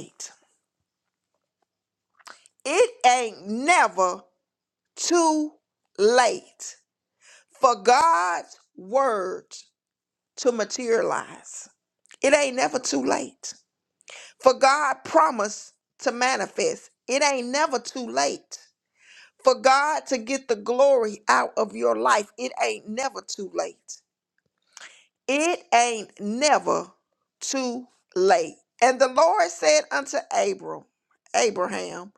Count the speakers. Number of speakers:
1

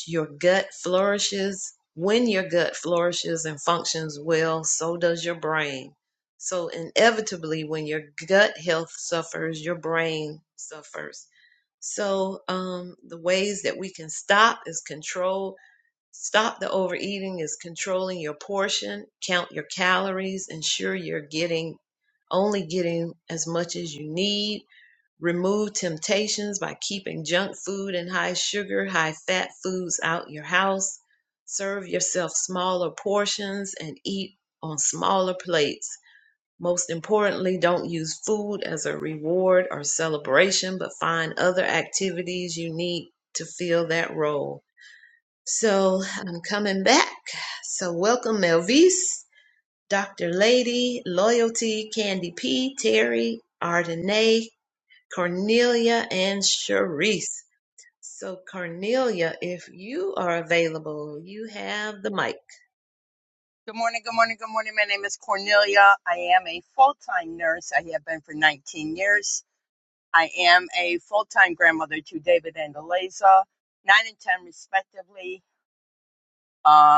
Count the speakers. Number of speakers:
2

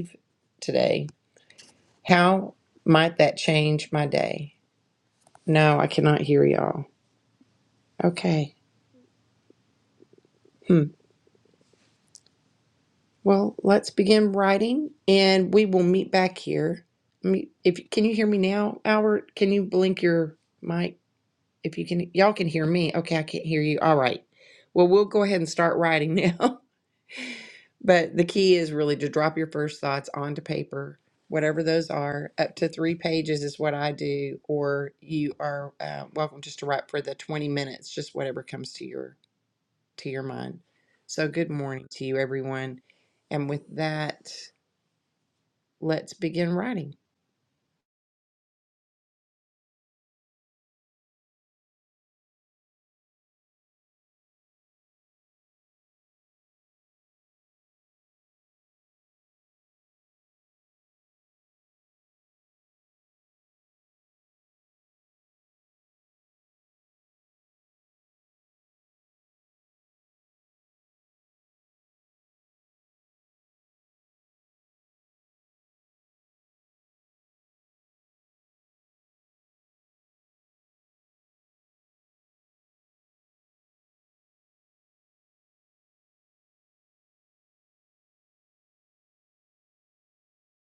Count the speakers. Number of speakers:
1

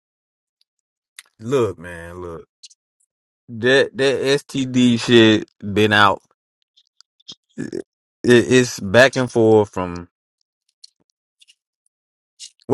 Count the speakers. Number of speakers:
1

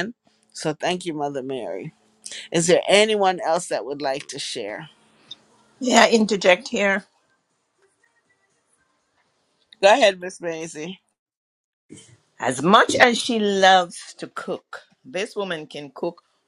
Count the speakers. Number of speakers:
2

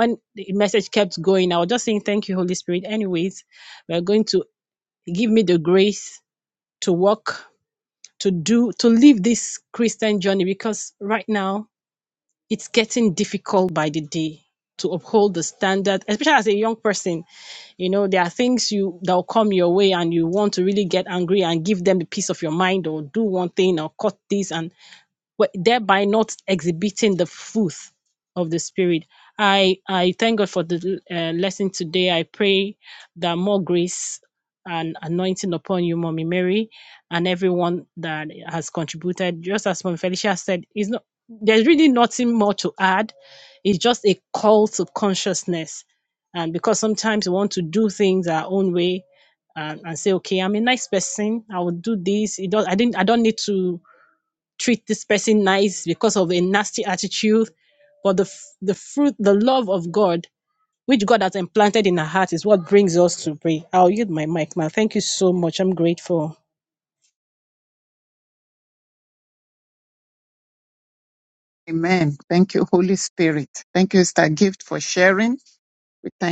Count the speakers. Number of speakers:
2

